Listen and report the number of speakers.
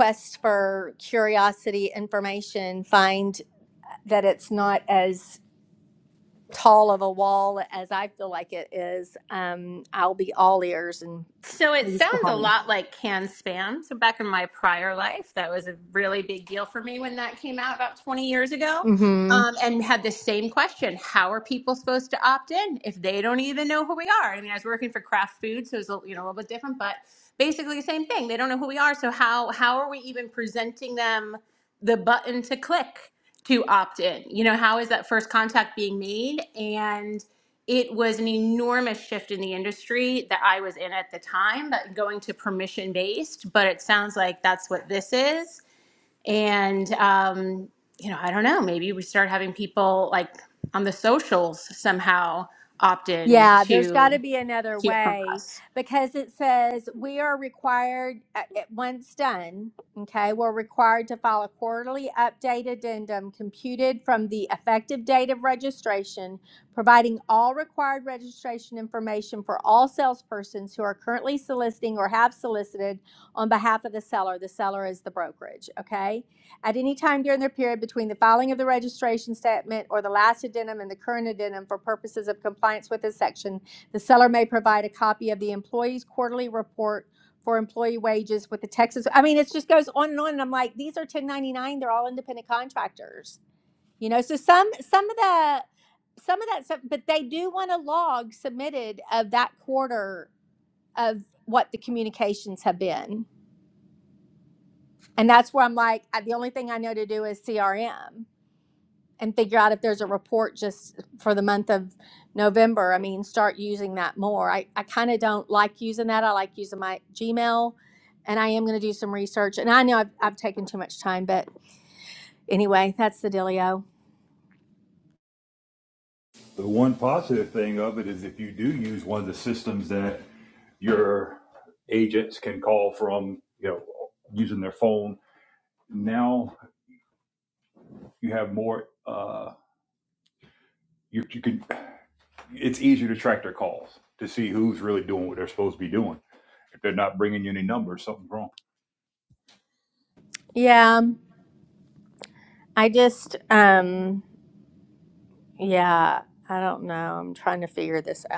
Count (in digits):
3